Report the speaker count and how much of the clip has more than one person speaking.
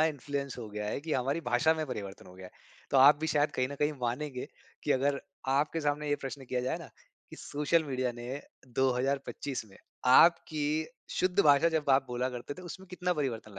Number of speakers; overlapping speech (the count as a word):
one, no overlap